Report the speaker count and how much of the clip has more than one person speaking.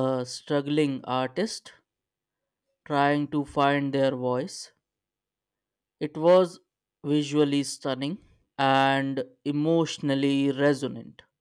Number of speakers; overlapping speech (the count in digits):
1, no overlap